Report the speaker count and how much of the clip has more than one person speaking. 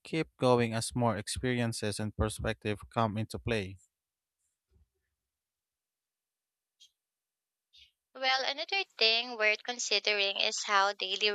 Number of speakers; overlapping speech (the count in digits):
2, no overlap